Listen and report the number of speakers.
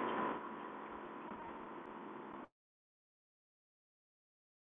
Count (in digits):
0